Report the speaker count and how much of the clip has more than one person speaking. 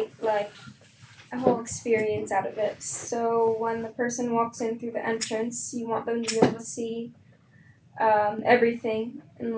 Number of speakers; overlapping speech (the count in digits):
1, no overlap